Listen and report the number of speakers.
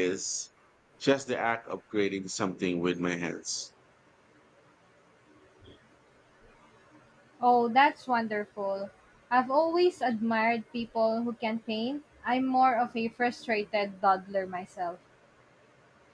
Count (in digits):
2